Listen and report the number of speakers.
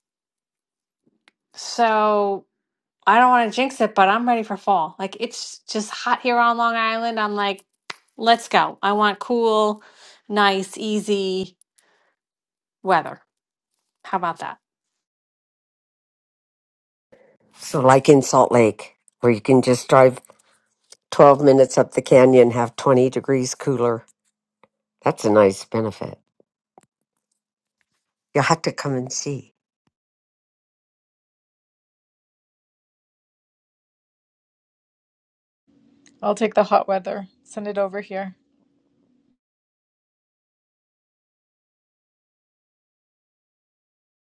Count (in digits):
3